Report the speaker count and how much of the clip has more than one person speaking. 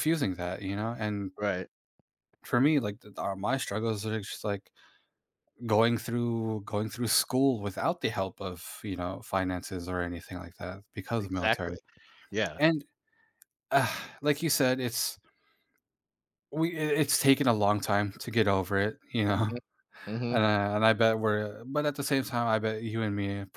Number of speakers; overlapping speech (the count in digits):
2, about 4%